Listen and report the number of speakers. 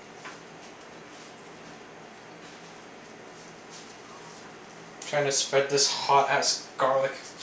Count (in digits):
1